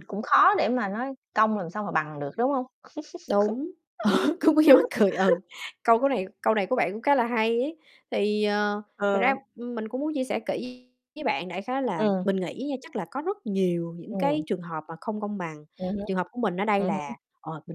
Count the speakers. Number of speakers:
two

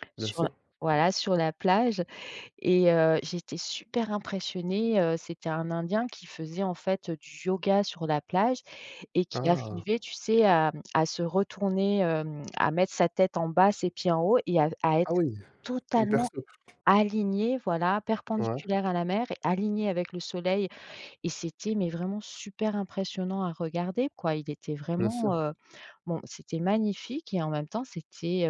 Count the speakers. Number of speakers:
two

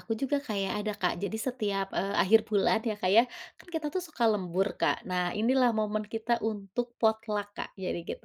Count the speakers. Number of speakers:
one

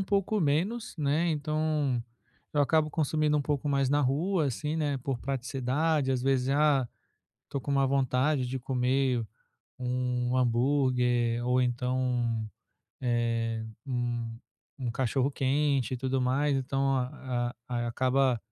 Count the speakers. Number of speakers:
one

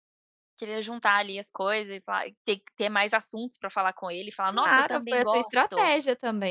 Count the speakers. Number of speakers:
two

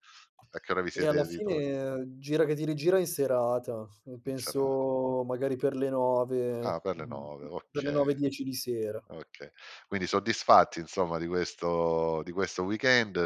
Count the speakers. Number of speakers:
two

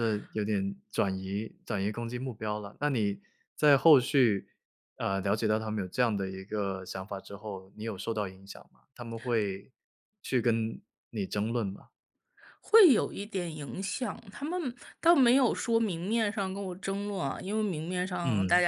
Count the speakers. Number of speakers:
two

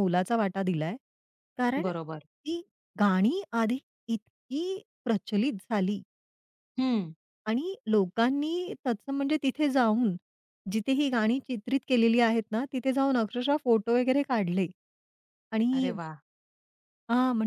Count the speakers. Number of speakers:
two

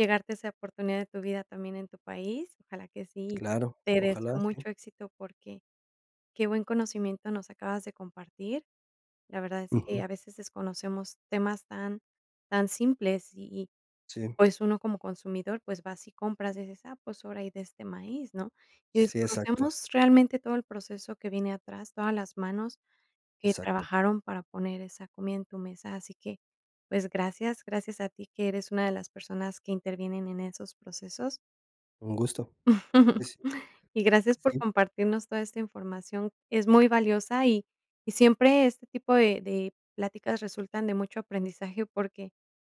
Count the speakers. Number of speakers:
two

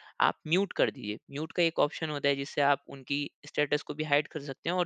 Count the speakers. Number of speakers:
one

